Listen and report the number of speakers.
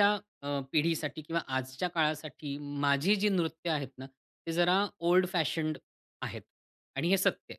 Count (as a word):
one